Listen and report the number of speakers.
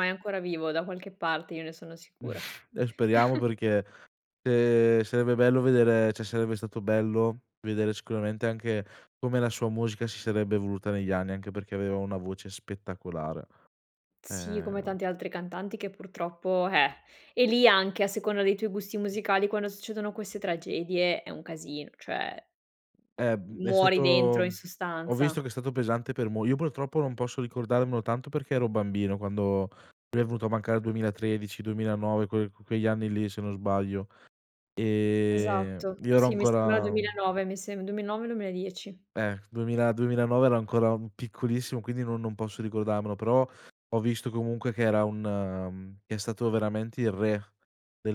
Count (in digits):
2